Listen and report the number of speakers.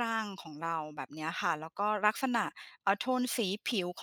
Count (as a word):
one